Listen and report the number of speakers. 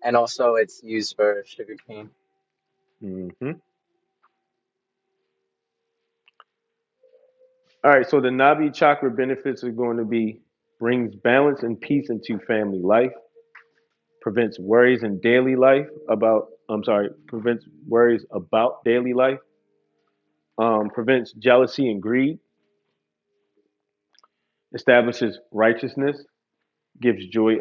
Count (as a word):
two